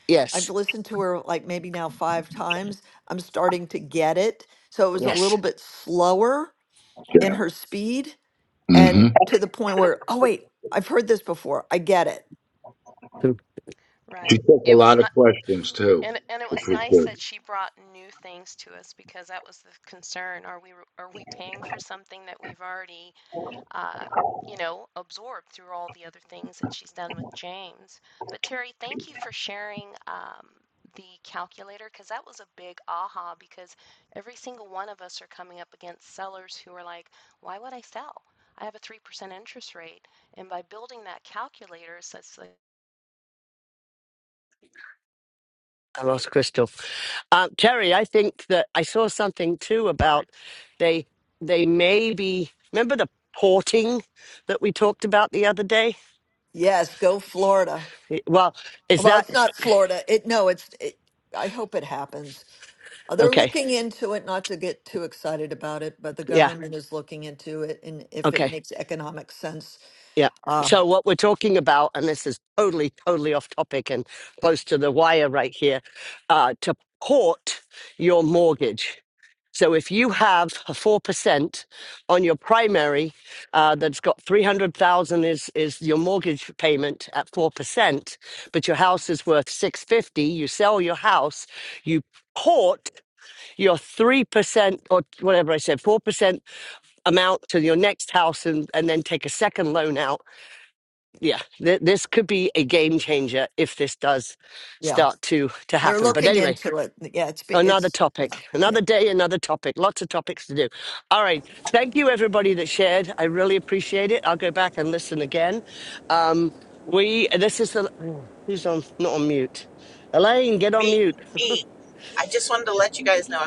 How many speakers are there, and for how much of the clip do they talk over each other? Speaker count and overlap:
5, about 5%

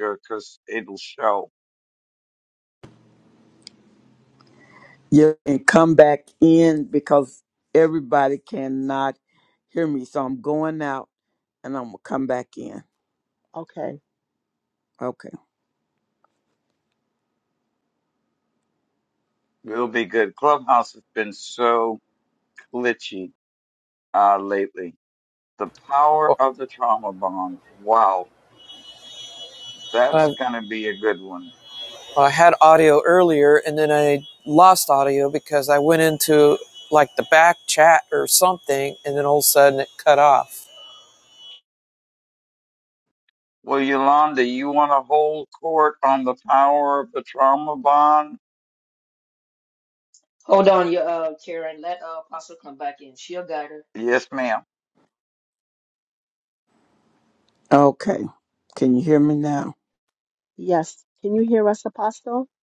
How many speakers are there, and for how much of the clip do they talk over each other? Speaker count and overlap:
5, about 1%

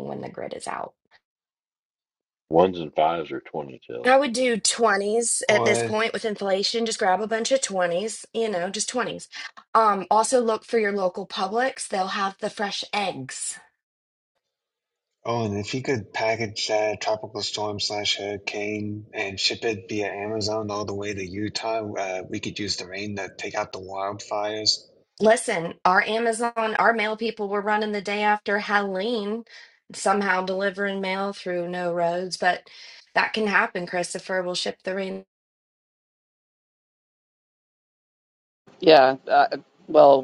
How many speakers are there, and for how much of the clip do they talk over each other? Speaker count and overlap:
4, about 1%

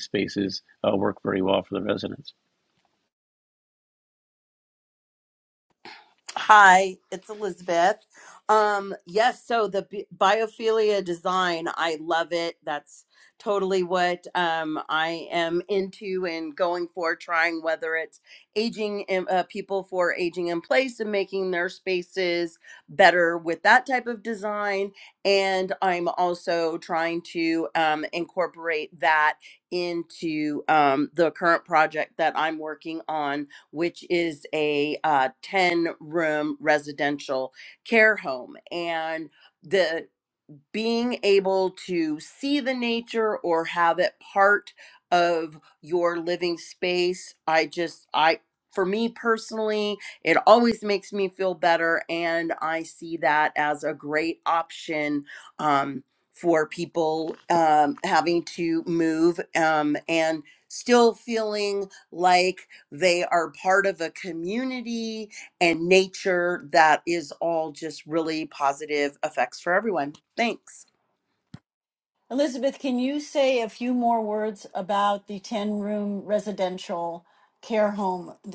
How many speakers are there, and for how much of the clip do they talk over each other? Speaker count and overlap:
3, no overlap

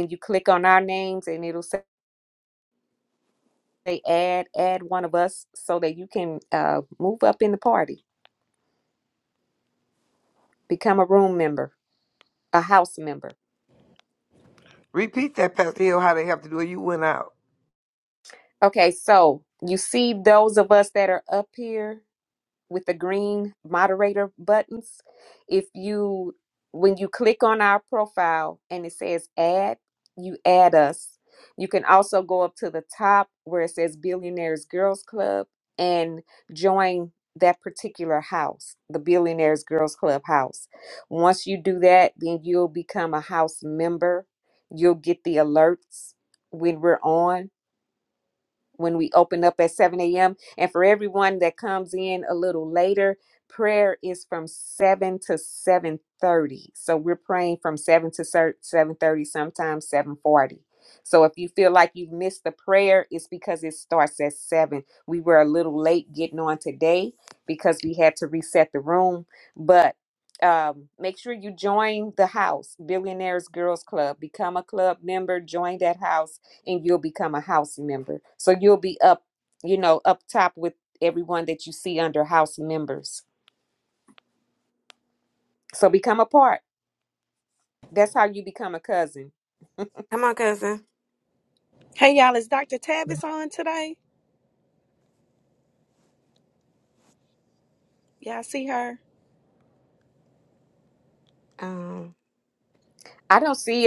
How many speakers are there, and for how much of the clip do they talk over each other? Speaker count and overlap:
4, no overlap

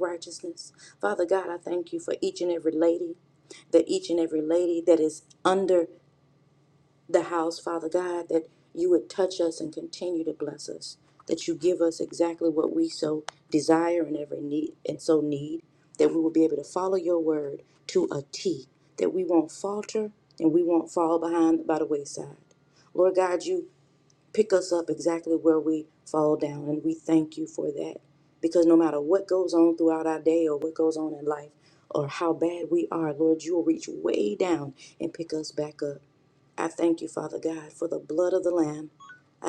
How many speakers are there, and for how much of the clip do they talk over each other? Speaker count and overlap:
1, no overlap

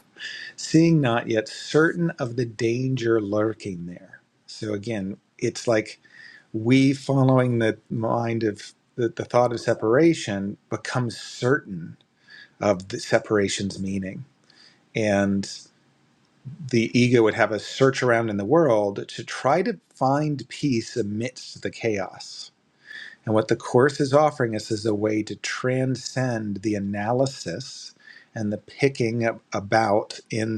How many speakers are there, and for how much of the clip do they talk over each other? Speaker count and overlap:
1, no overlap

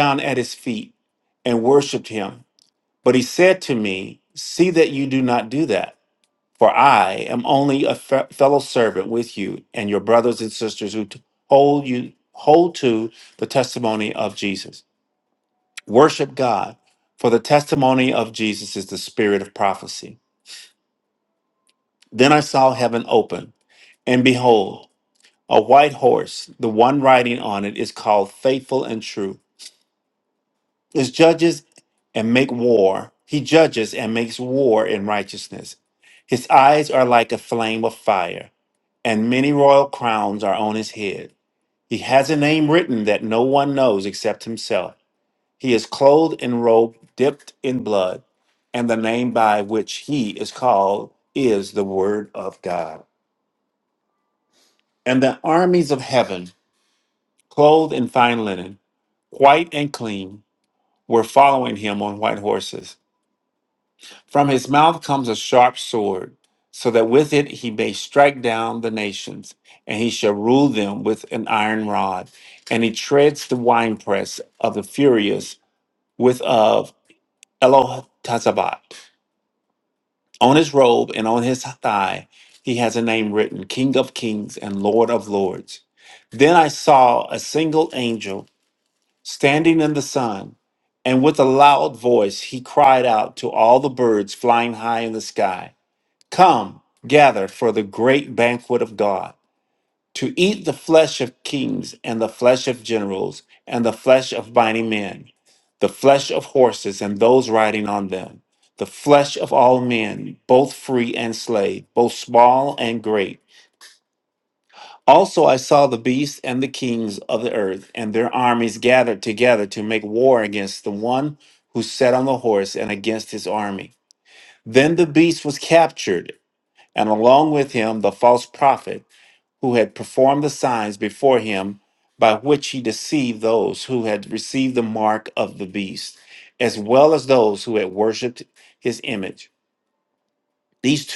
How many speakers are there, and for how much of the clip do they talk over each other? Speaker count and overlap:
1, no overlap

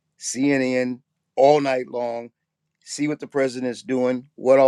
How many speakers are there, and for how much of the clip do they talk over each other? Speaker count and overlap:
1, no overlap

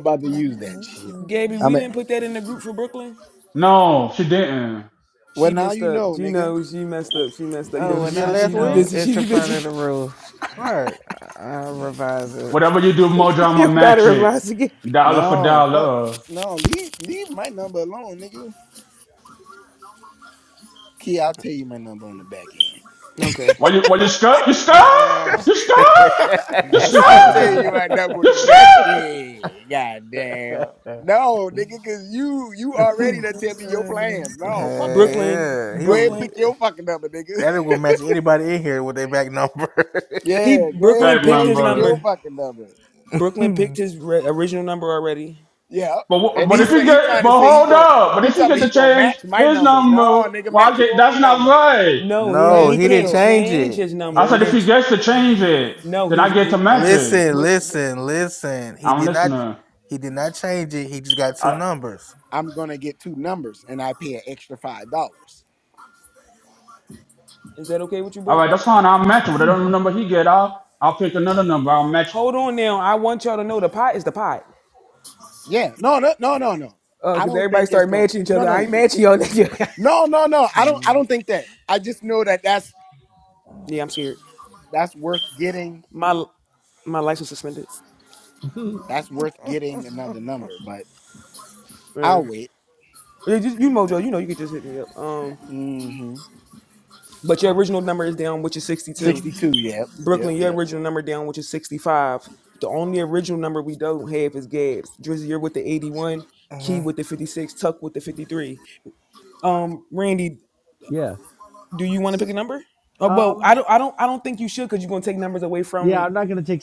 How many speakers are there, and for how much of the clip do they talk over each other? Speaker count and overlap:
6, about 21%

